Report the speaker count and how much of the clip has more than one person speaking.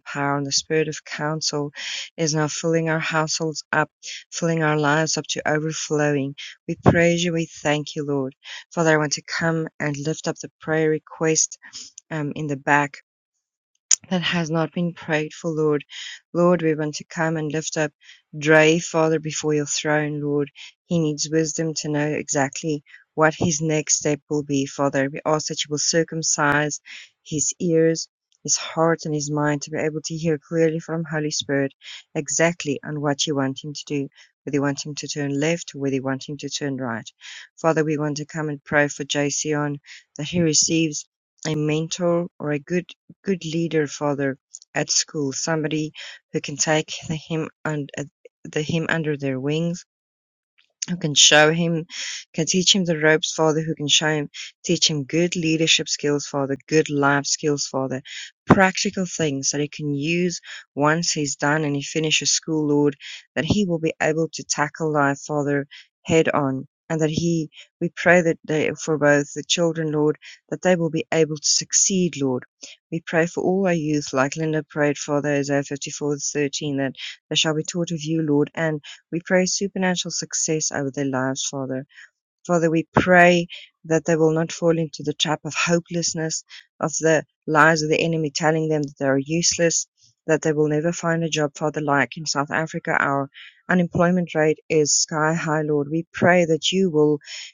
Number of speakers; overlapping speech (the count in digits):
1, no overlap